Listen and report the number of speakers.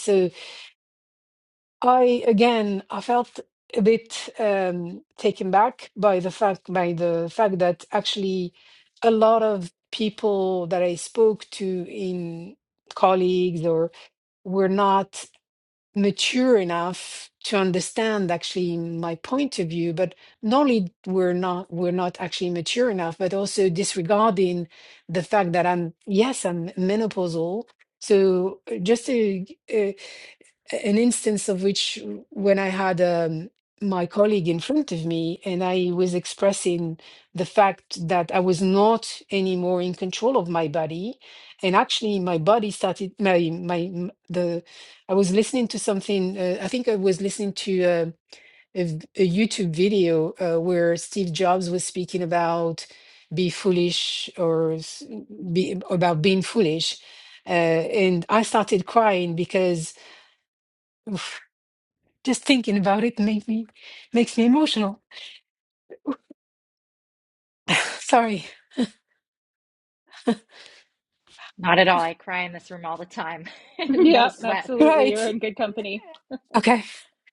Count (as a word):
three